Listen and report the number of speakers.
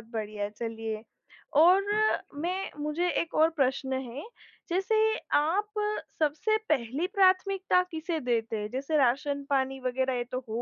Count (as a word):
one